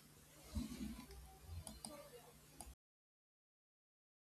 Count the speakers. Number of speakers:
0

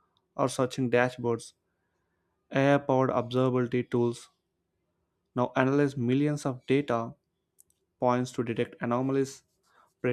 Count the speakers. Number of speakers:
1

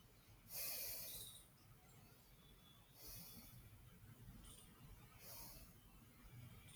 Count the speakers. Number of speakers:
0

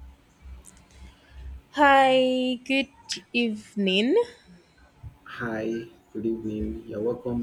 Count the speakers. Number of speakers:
2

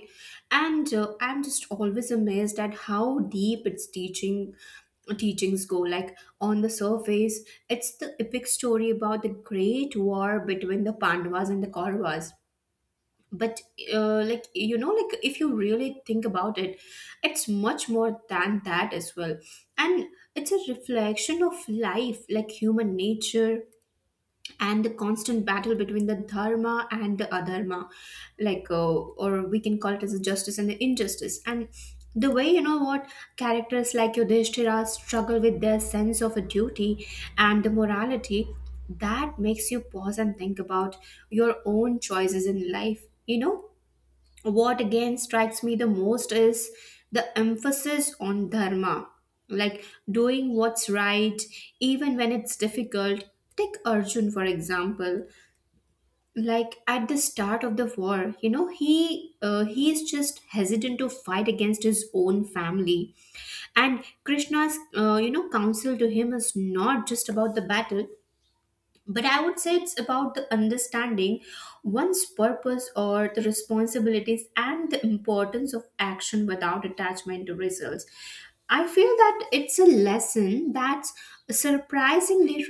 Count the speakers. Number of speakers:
1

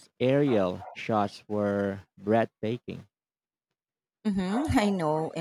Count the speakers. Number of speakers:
2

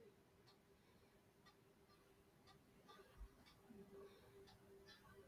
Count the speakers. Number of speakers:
0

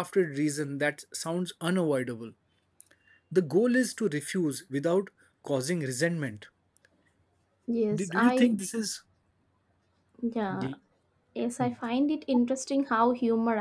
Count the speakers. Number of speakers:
2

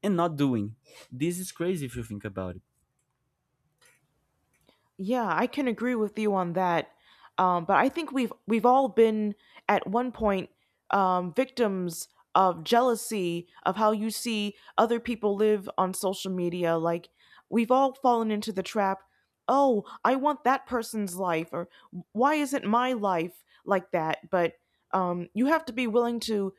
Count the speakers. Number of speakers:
2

